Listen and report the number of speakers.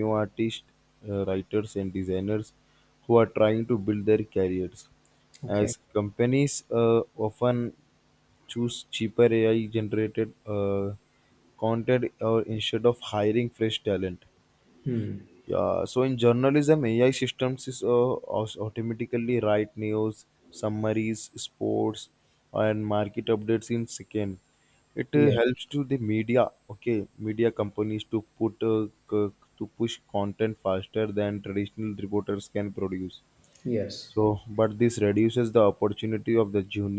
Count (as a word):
two